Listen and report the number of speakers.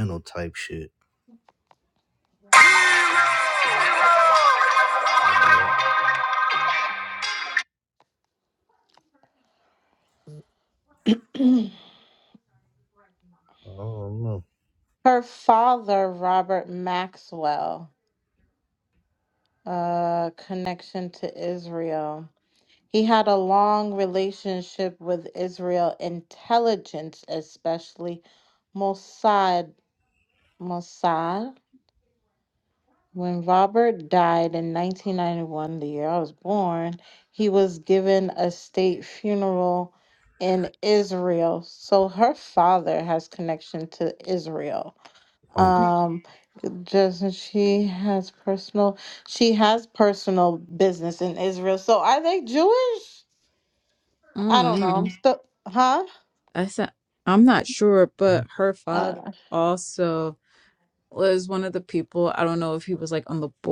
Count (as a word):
three